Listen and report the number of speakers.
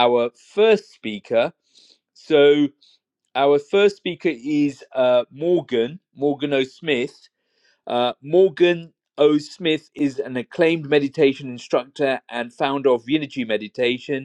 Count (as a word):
one